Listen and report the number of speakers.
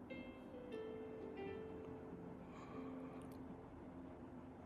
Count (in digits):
0